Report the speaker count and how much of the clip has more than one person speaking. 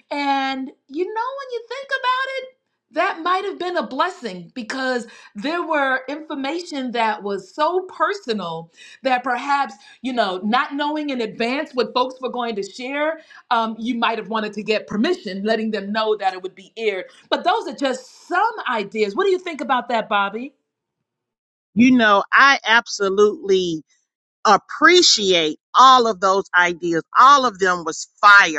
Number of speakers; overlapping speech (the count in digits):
2, no overlap